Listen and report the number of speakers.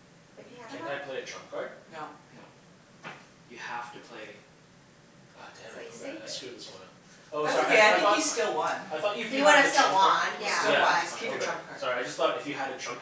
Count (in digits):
4